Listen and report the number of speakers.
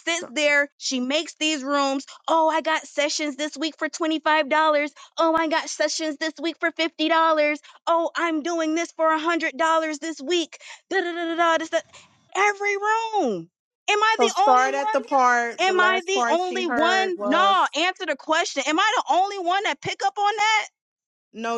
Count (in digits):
2